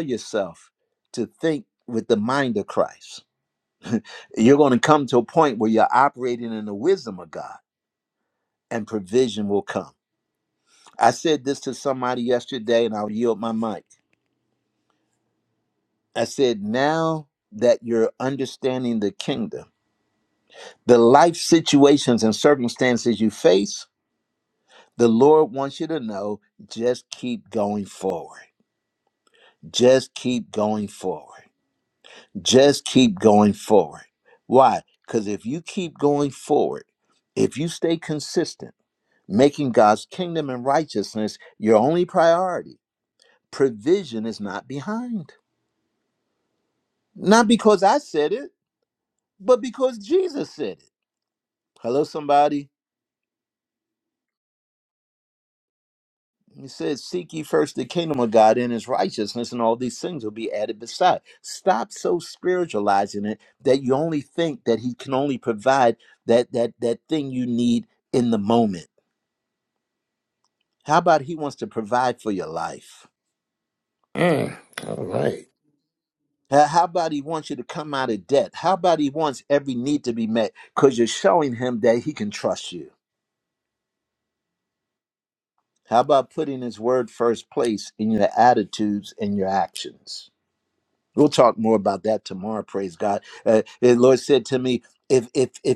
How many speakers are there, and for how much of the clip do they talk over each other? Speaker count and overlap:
two, no overlap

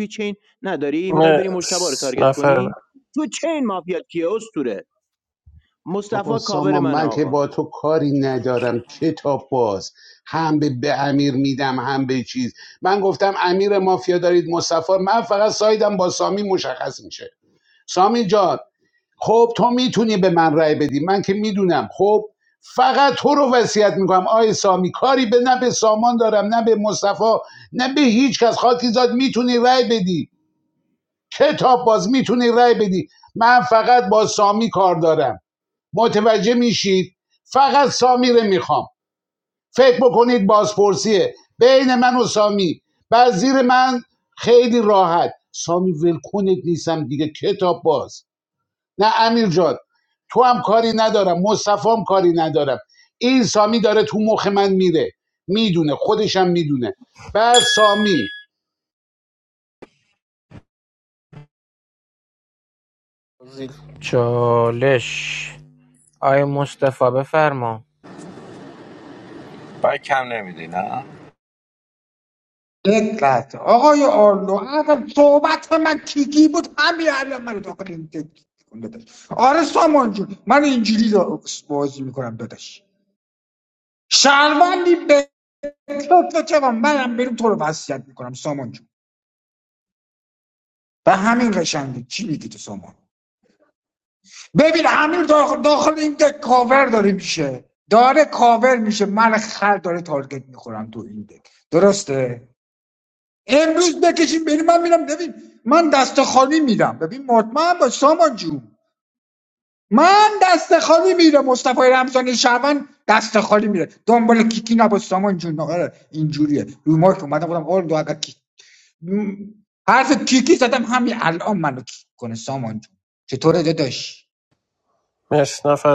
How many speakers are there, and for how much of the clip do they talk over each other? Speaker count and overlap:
six, about 2%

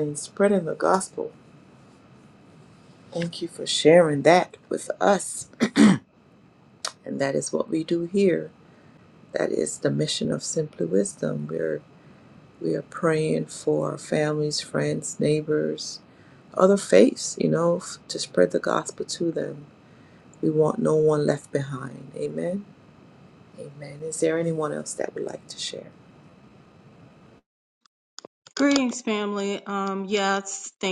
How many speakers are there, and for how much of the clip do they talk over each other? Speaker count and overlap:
two, no overlap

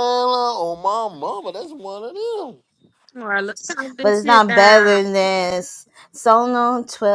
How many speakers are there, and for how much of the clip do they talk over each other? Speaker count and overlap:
three, about 14%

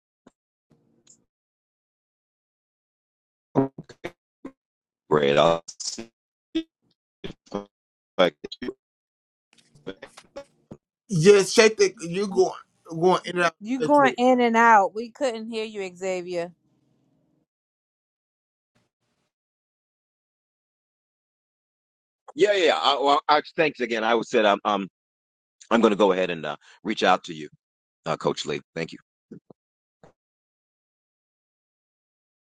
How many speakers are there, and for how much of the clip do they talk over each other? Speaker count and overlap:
three, about 1%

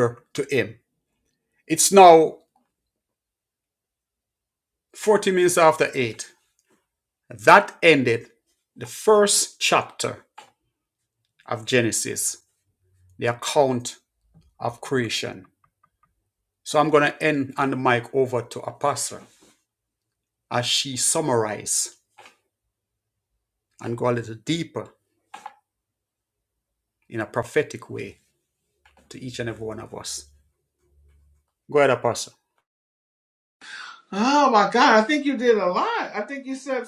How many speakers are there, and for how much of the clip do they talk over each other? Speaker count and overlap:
two, no overlap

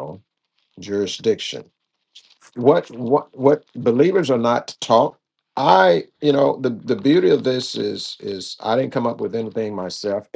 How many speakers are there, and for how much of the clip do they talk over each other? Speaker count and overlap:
one, no overlap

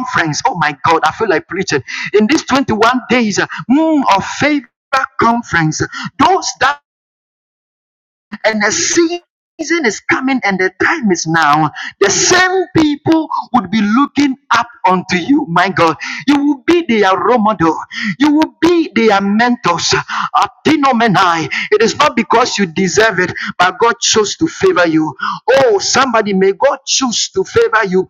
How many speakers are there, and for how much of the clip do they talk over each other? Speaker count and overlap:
one, no overlap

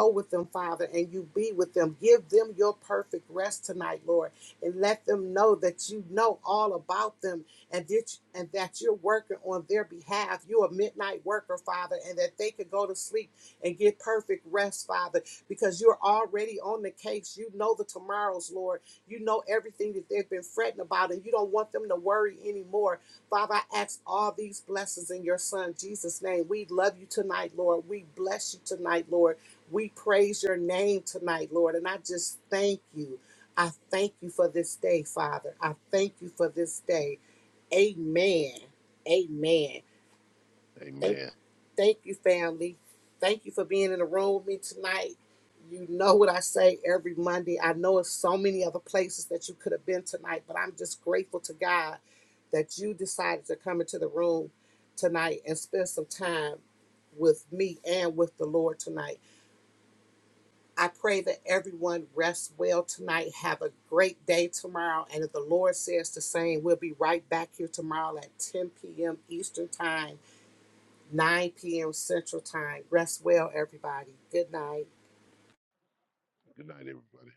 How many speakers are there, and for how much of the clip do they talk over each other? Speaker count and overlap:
two, under 1%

